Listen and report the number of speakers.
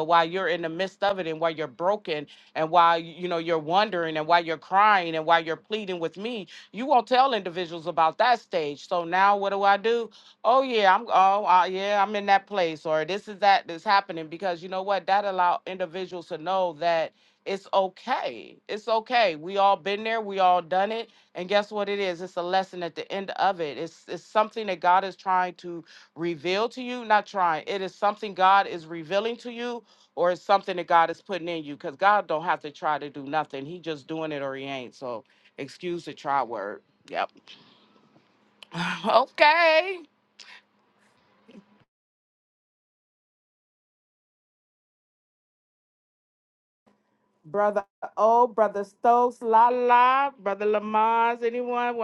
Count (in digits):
1